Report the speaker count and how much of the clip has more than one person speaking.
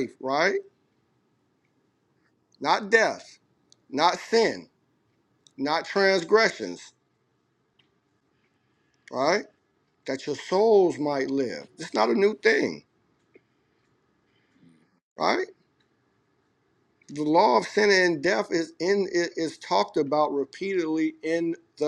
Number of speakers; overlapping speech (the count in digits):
1, no overlap